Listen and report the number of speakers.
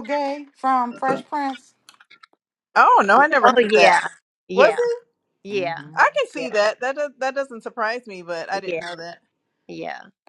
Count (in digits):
3